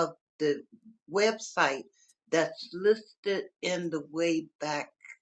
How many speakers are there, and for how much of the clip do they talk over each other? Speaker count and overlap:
1, no overlap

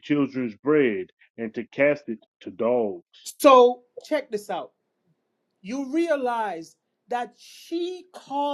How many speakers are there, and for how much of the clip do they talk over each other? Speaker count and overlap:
2, no overlap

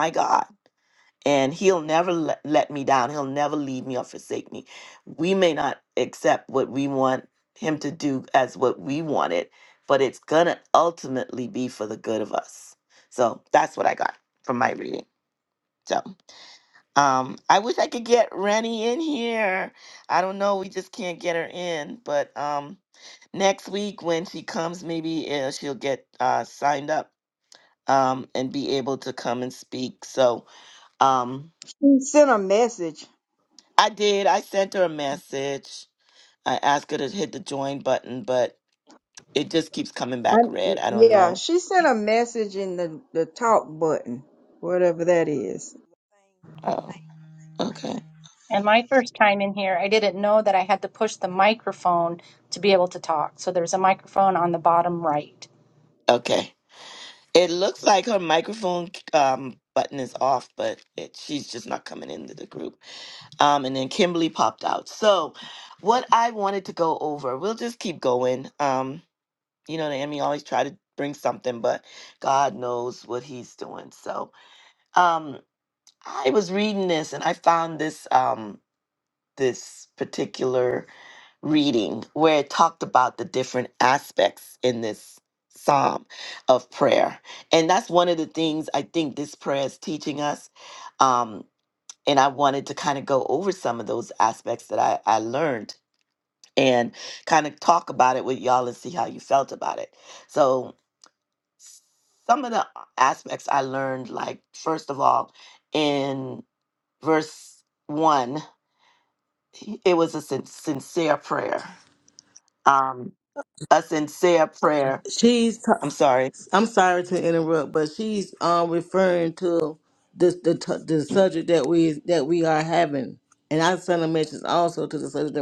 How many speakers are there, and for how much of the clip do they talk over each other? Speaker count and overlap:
4, under 1%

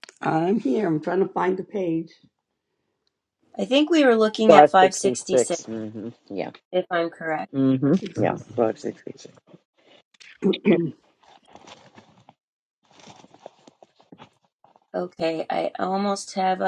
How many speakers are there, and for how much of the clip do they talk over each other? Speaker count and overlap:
3, about 9%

